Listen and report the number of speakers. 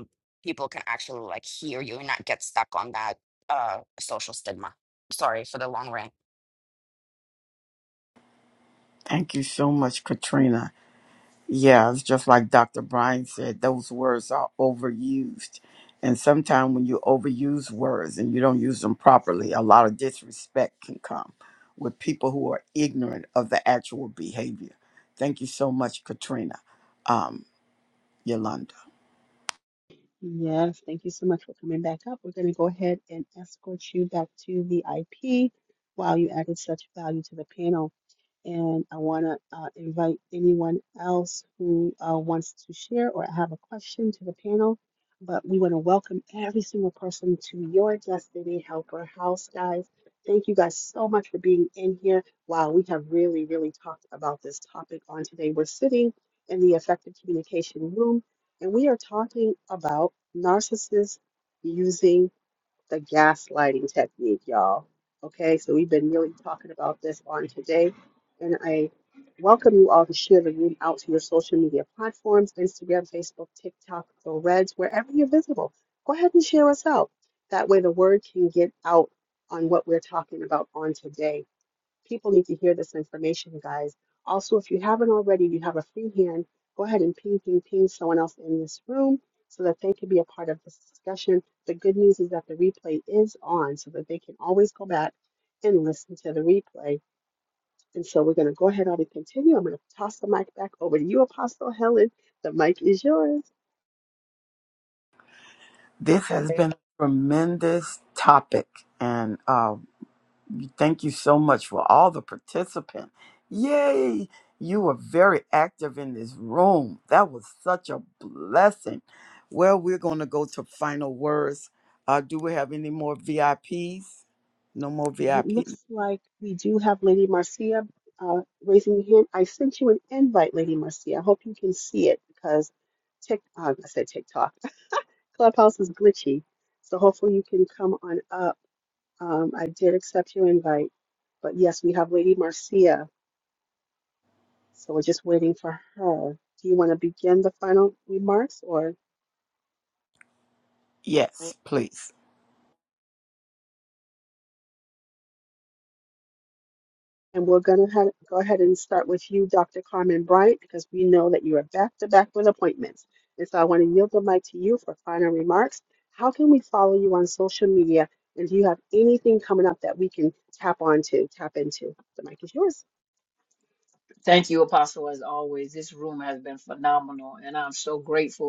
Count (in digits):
4